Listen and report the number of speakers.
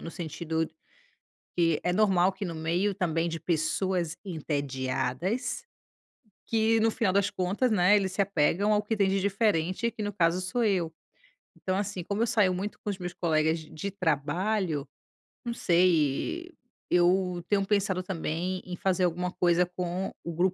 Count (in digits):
1